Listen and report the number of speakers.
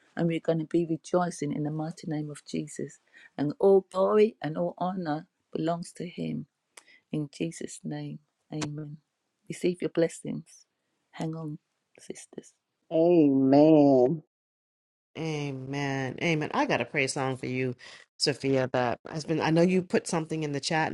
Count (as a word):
three